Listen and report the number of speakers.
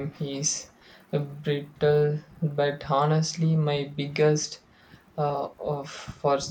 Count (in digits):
1